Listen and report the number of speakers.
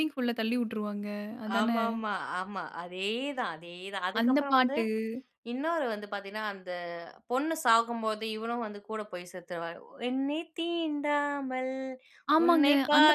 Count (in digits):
2